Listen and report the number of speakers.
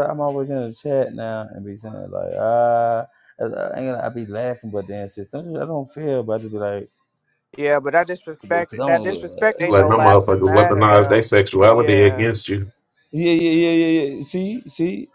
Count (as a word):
three